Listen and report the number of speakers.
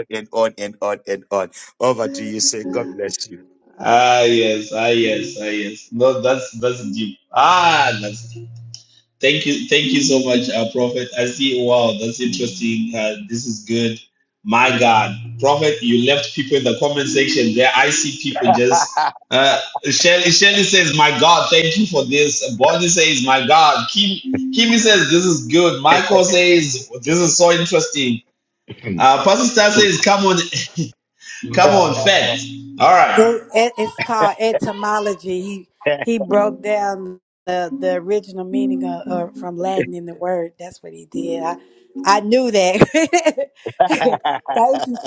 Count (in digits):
3